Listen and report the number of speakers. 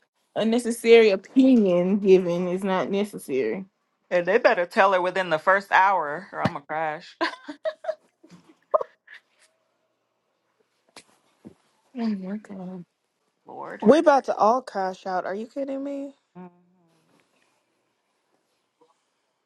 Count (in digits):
3